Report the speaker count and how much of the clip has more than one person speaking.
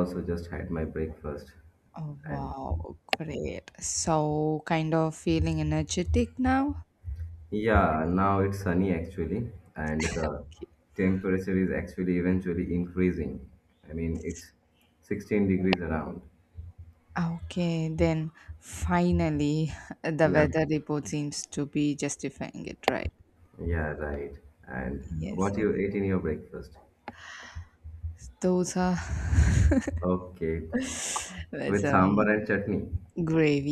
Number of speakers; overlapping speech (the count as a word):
two, about 5%